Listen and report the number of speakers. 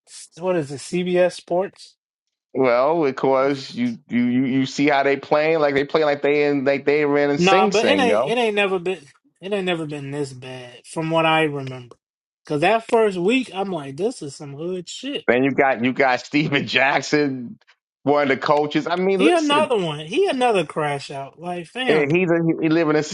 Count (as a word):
two